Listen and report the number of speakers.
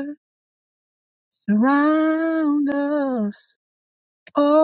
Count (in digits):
1